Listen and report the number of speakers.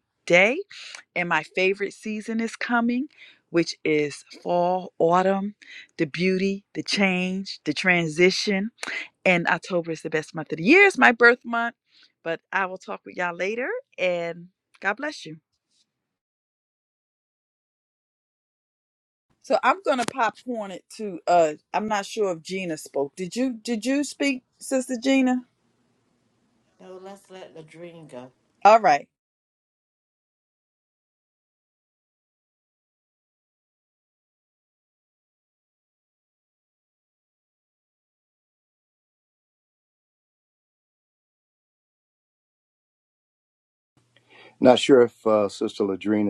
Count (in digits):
3